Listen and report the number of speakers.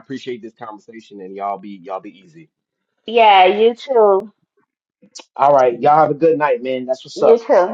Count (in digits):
3